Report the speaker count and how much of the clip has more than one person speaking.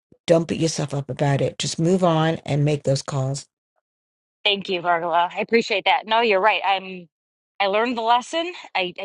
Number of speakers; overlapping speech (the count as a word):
two, no overlap